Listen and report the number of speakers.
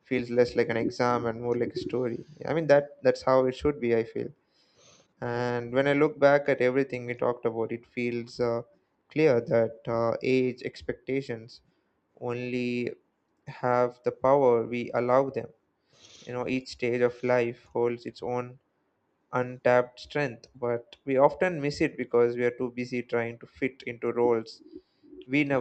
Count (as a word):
one